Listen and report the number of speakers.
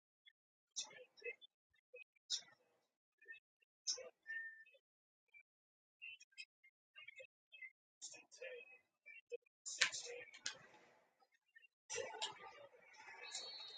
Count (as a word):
zero